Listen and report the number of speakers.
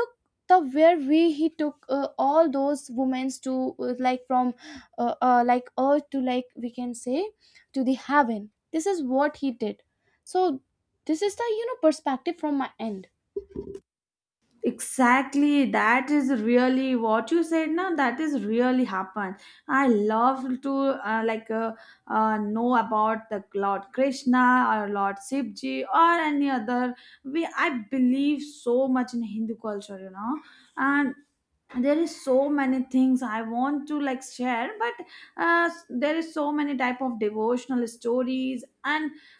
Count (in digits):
2